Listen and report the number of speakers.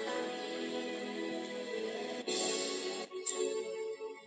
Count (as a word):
zero